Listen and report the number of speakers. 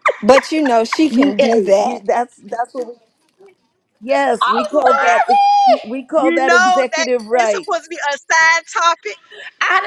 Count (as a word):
four